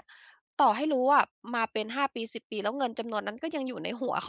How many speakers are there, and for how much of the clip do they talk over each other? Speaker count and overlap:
one, no overlap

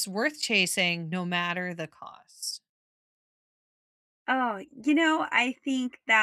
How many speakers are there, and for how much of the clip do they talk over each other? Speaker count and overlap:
two, no overlap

